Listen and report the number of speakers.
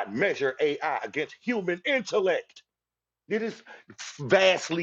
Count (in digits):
1